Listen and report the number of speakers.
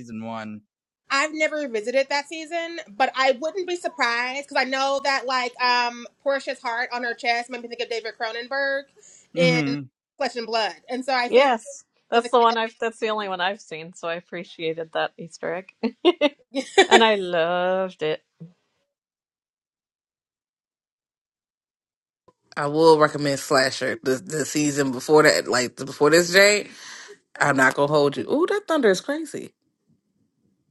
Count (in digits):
4